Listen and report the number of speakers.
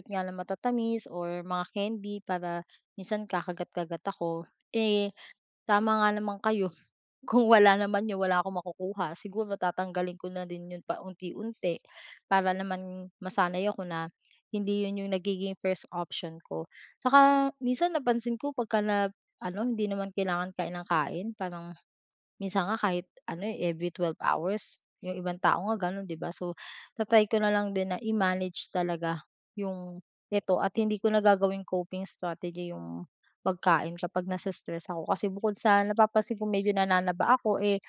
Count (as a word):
one